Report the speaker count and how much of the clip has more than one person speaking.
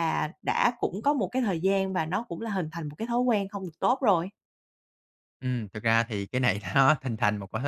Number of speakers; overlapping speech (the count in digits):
2, no overlap